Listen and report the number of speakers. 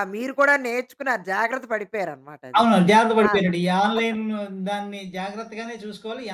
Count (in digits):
2